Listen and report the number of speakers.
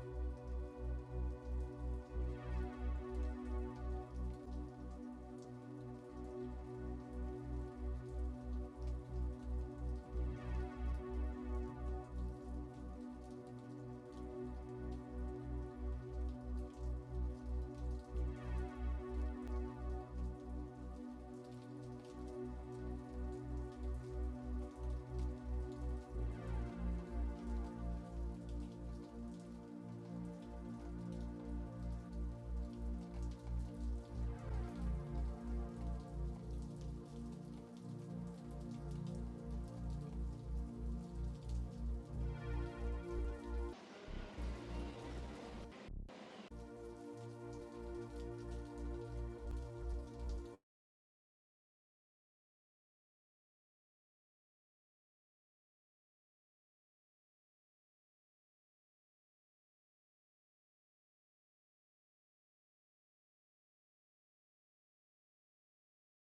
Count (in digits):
0